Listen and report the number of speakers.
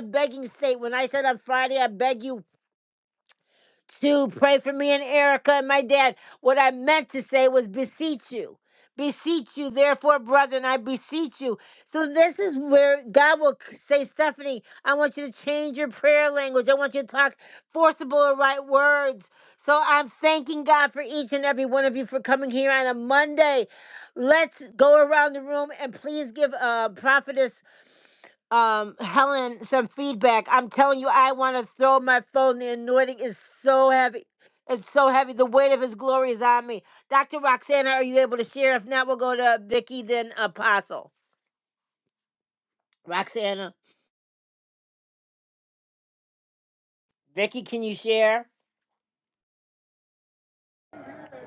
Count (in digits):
1